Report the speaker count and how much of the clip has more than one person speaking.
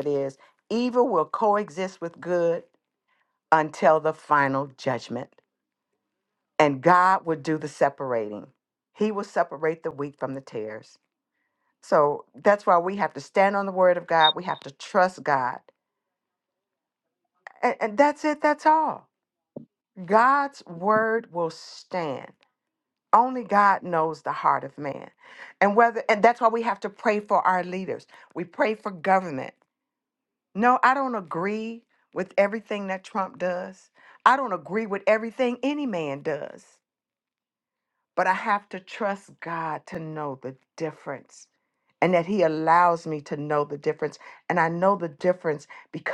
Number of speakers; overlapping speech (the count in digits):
1, no overlap